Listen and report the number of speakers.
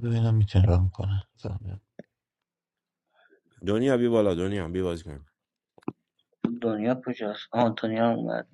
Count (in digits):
3